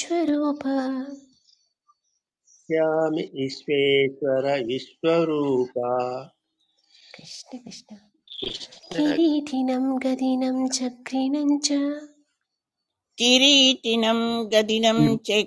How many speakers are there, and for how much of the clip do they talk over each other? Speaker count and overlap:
3, no overlap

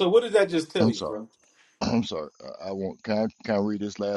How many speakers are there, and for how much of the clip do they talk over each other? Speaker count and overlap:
2, about 9%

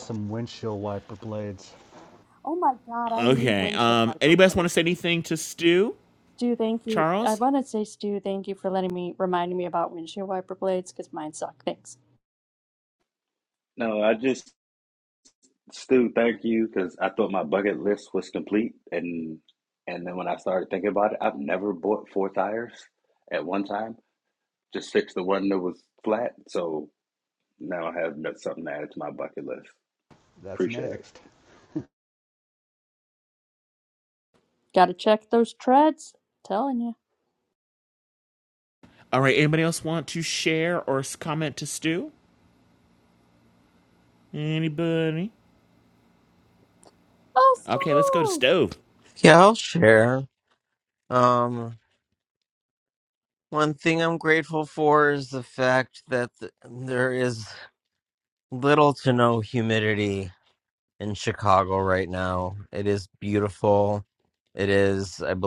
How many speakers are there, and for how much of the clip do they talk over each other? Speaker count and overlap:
5, about 5%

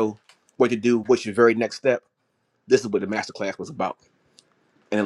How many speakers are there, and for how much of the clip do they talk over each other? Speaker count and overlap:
1, no overlap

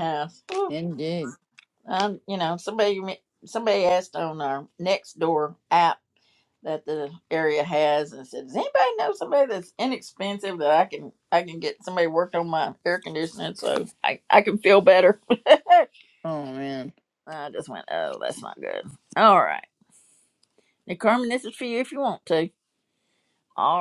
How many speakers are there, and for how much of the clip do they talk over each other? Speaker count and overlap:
2, under 1%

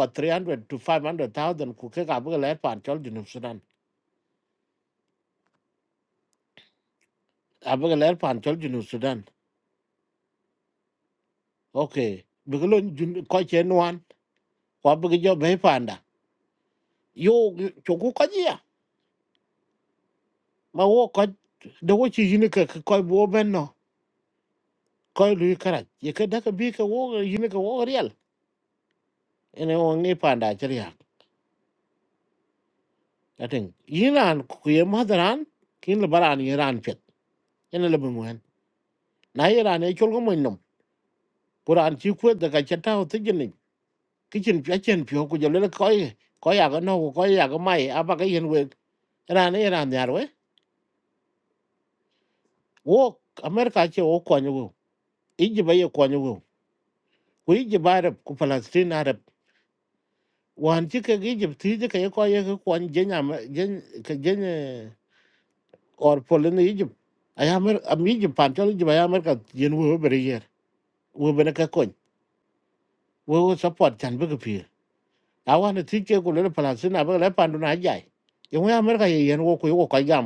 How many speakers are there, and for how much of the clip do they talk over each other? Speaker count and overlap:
1, no overlap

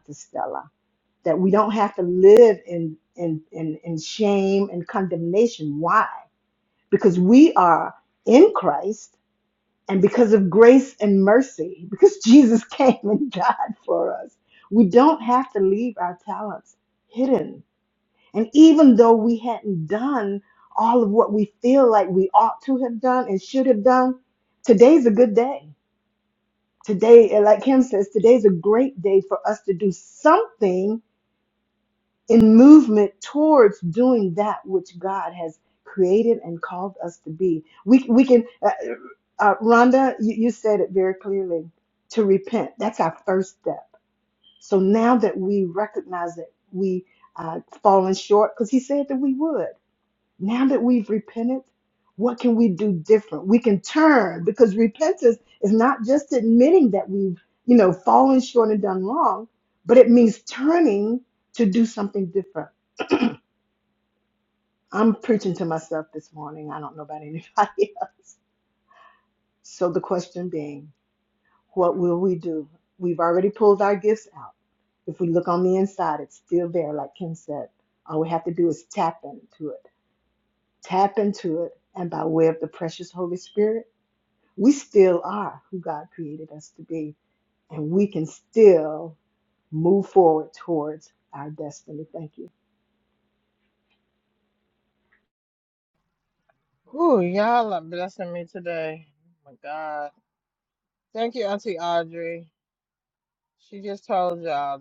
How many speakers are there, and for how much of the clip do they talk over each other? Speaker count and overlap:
2, no overlap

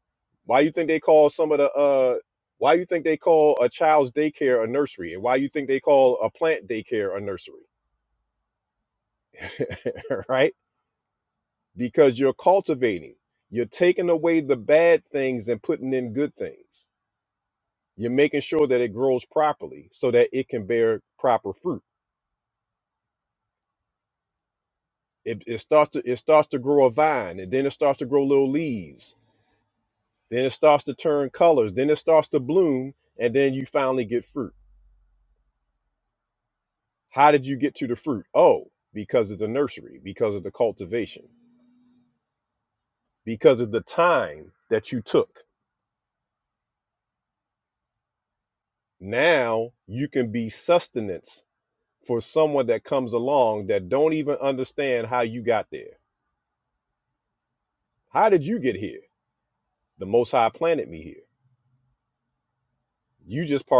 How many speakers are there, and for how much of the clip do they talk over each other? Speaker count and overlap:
1, no overlap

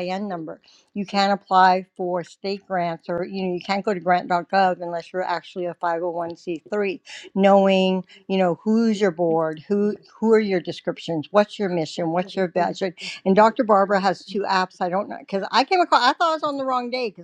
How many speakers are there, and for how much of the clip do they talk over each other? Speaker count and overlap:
1, no overlap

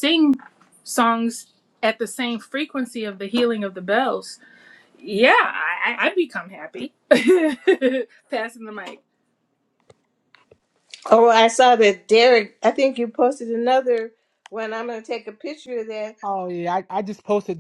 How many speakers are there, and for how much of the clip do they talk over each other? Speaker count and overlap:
3, no overlap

